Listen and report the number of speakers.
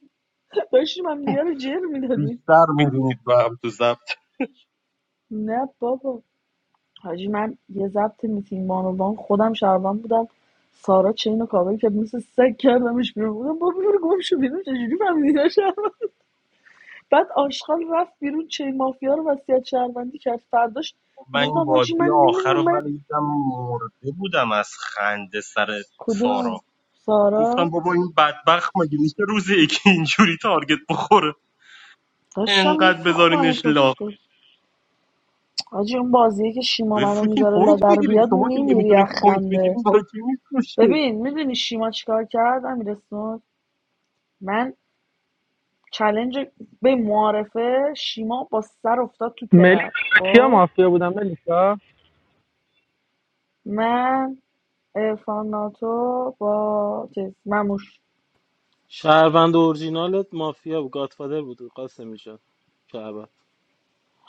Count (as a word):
four